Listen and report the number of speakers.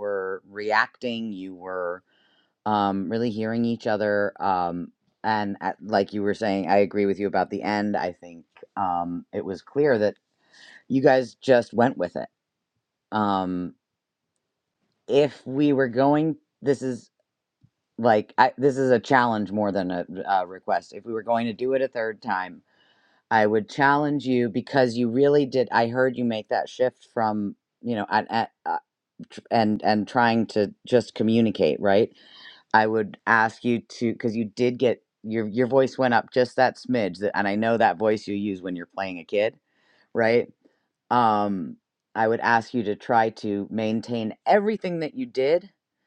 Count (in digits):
1